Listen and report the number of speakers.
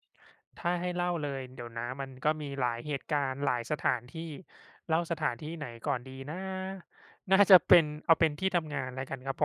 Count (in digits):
1